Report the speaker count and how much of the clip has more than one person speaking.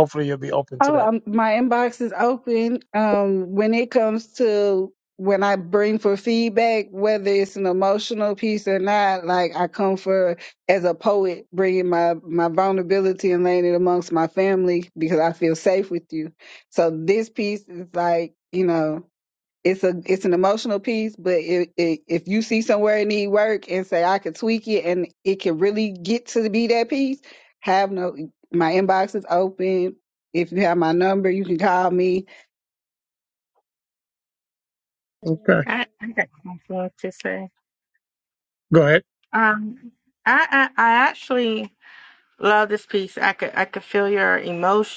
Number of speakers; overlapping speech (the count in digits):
3, about 1%